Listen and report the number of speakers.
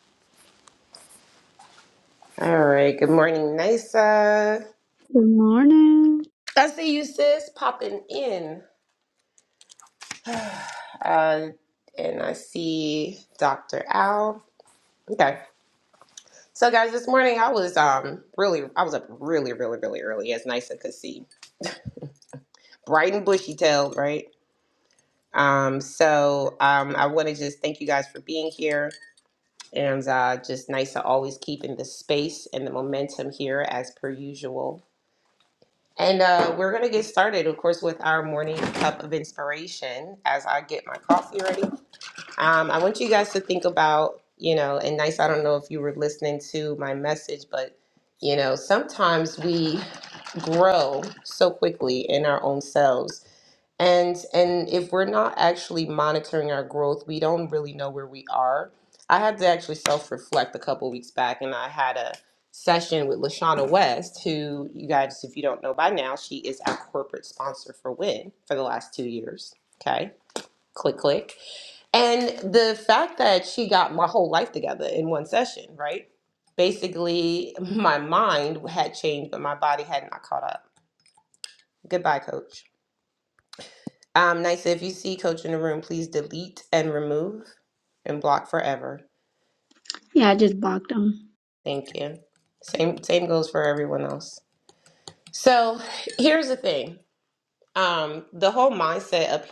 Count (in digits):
2